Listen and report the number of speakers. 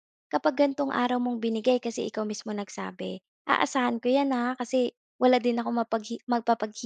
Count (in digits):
1